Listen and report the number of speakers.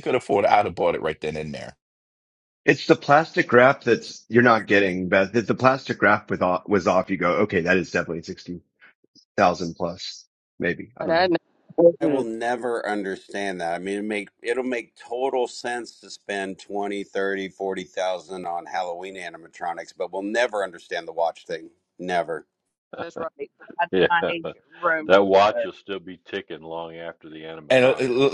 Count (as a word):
five